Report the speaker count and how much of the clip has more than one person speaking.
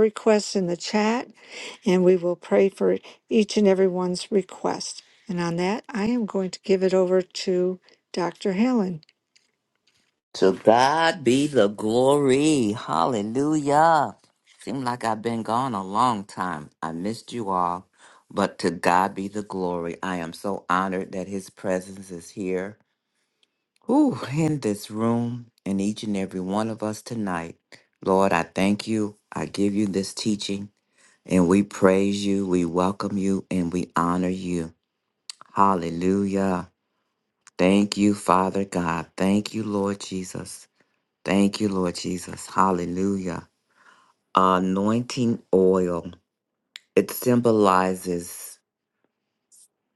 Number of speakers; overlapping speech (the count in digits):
2, no overlap